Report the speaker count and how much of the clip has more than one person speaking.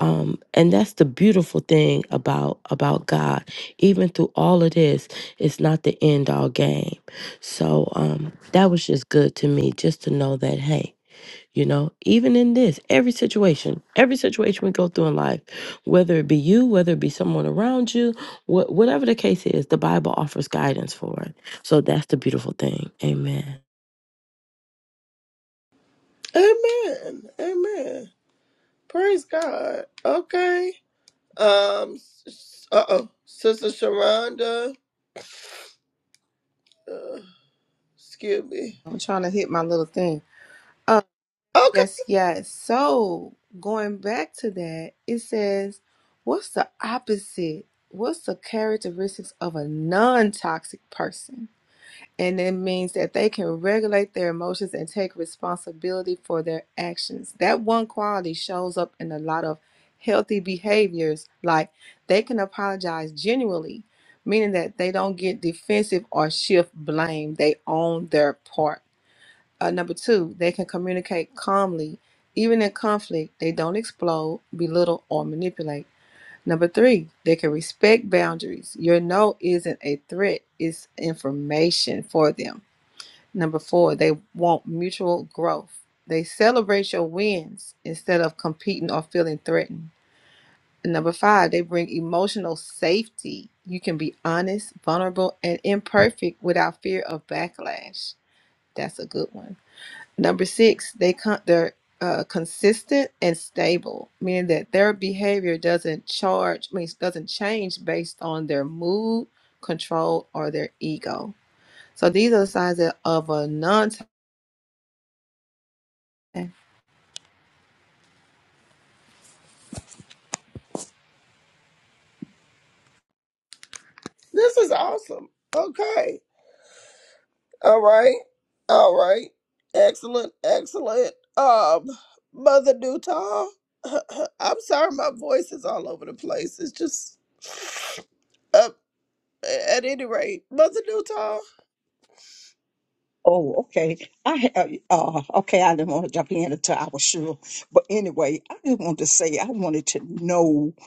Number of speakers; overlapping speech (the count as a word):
four, under 1%